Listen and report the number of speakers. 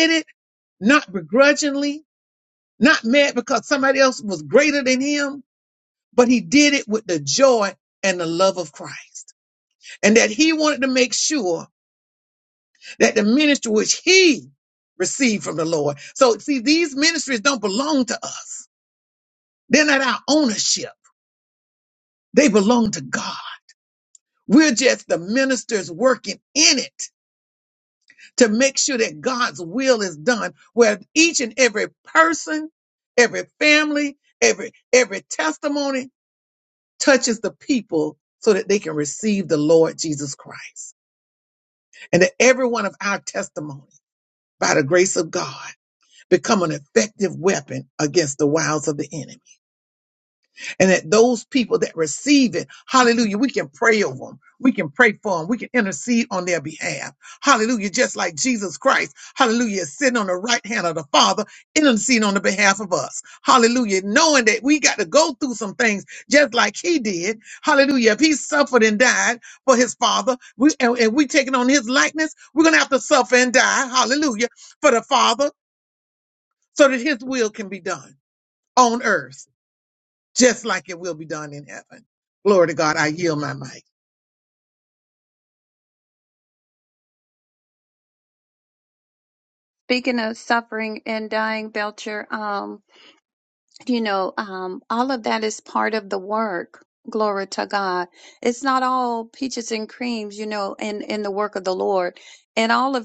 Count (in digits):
2